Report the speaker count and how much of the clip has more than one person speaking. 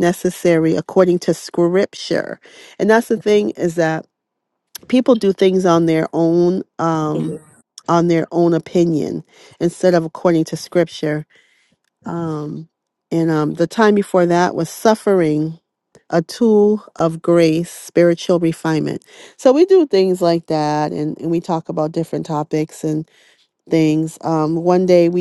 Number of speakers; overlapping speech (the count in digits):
1, no overlap